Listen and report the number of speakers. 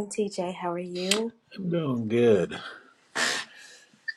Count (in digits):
2